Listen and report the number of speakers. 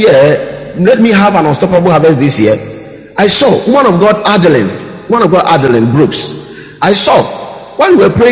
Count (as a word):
one